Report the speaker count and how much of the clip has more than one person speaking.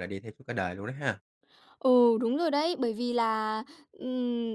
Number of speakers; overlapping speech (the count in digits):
2, no overlap